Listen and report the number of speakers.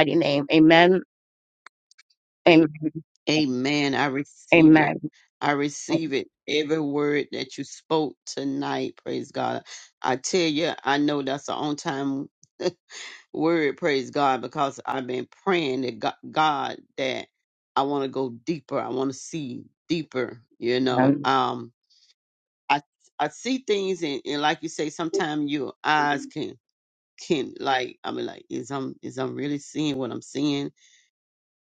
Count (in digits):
2